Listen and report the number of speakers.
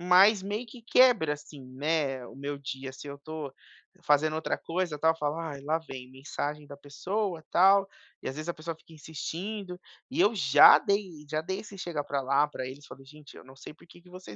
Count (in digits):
1